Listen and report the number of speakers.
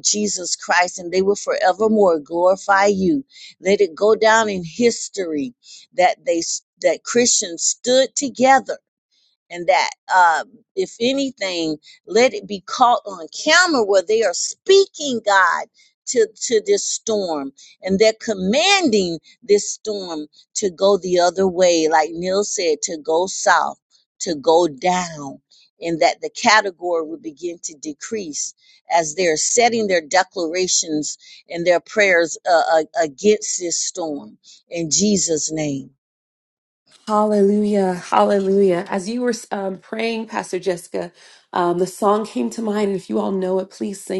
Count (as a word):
two